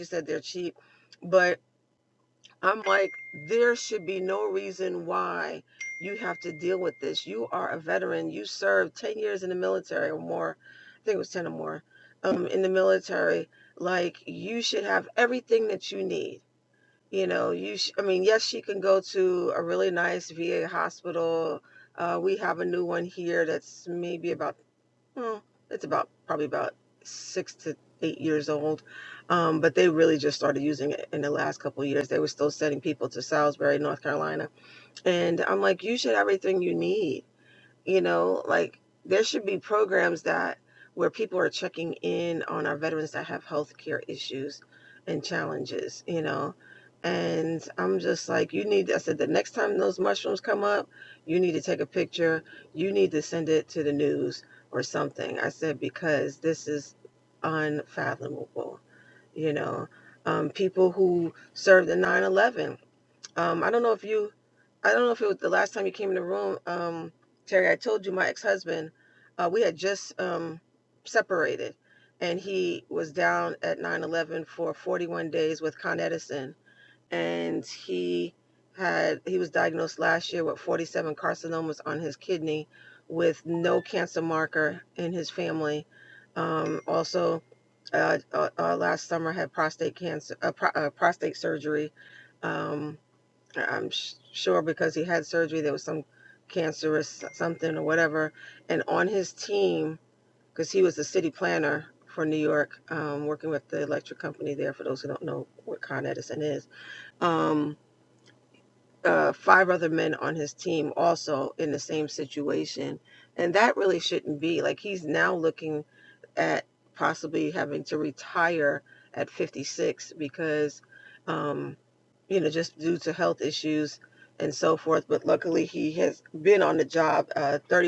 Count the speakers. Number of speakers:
1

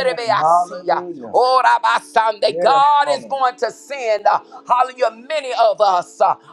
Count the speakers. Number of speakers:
2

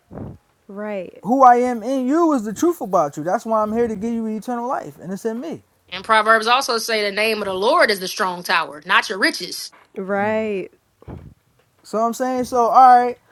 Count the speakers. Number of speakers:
3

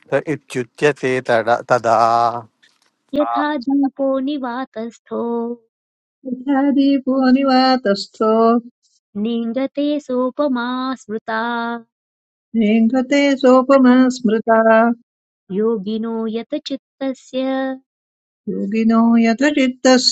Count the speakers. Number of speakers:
3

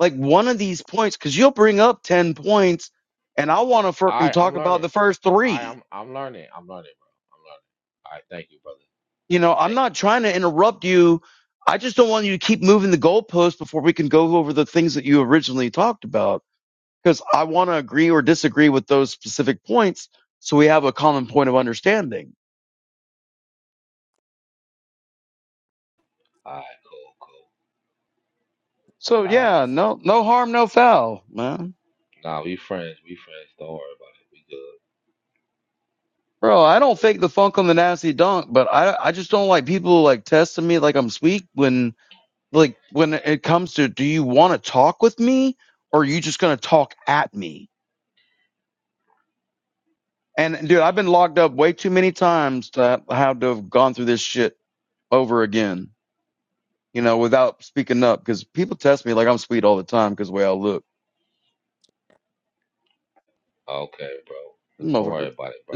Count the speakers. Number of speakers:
2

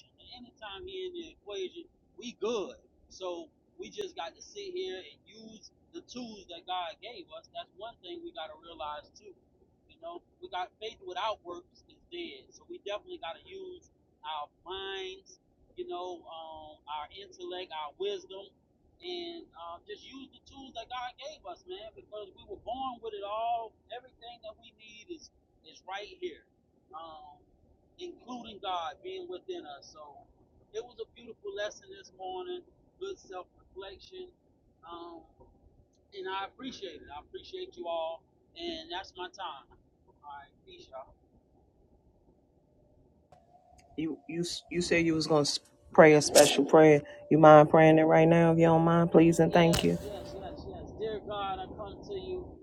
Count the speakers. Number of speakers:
2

